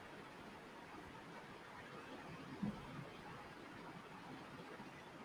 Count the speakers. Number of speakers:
0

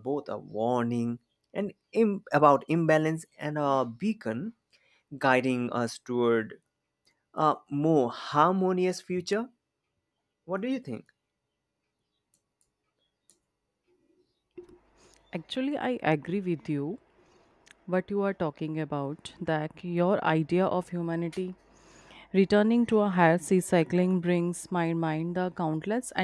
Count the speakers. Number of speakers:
2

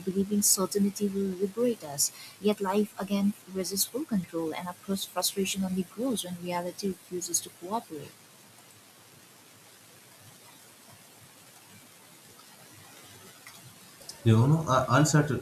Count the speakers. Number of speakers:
2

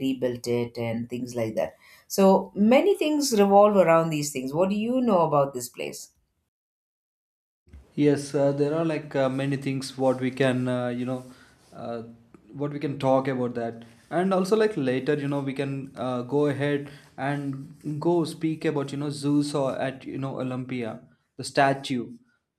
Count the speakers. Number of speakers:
2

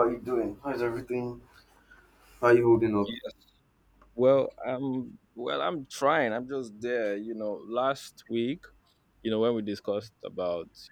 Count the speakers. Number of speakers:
2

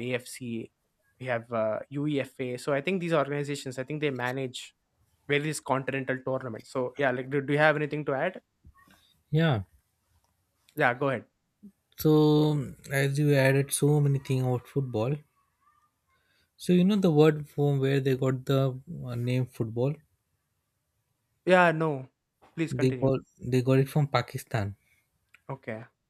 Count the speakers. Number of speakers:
2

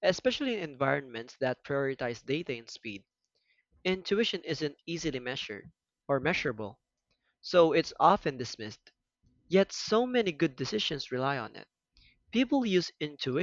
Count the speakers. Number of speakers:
1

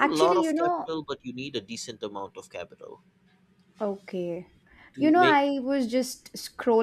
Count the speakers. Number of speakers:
2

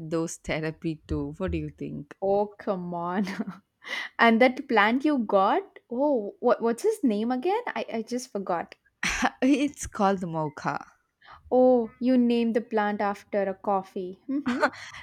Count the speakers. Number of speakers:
2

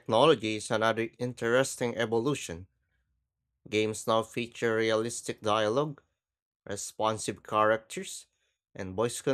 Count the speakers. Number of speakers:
1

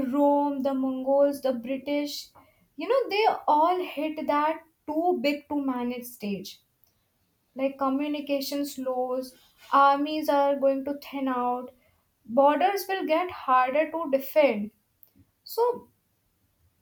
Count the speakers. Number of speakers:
1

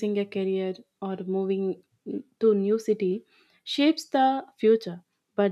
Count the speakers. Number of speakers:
1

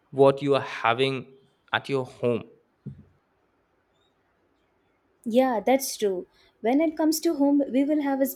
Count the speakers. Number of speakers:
2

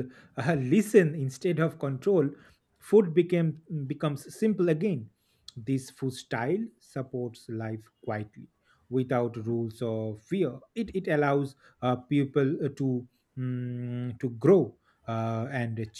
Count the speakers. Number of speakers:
1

